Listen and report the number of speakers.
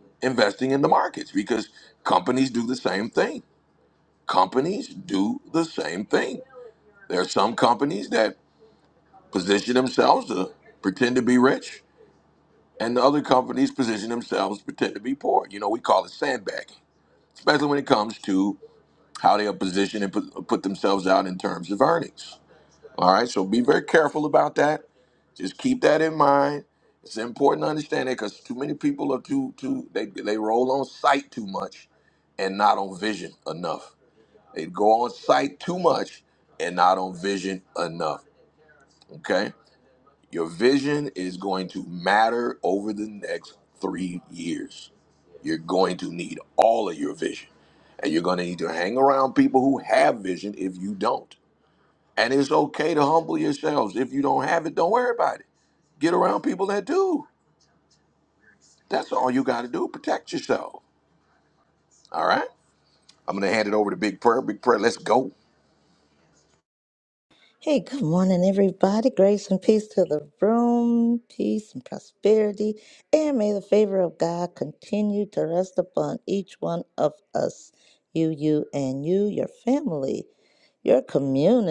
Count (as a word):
two